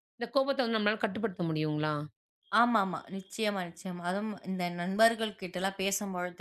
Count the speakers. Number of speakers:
2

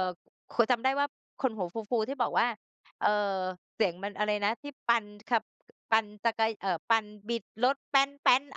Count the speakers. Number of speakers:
1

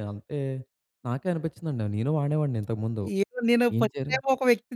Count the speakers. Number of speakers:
2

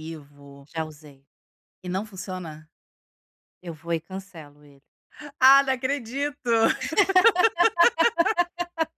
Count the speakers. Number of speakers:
2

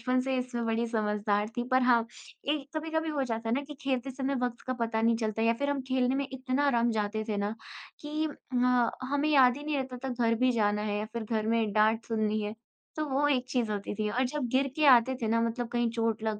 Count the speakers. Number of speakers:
1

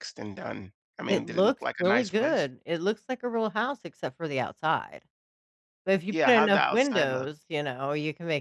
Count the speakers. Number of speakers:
2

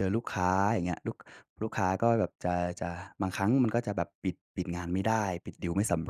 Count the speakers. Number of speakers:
1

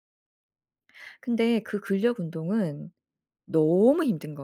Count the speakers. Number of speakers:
1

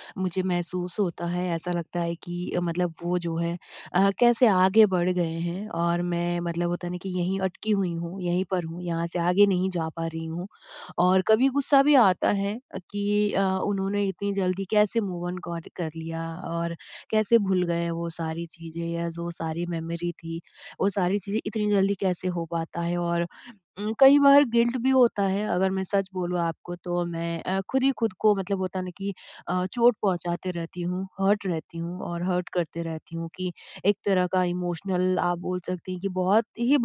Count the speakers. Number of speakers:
1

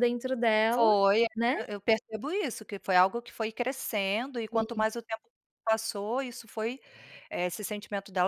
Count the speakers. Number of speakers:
2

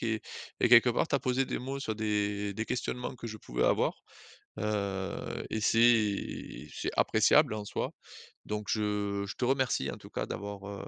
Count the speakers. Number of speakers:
1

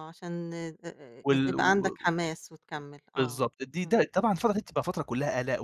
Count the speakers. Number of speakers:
2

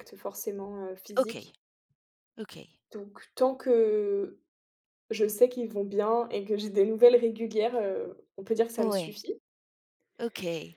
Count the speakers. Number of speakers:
2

